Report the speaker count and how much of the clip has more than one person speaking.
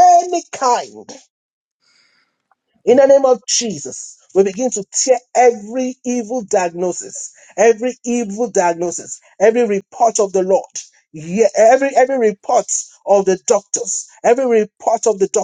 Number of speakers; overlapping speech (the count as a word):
one, no overlap